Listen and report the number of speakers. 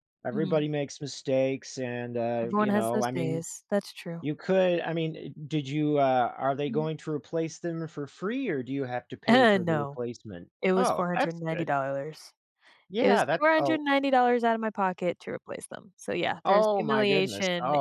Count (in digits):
2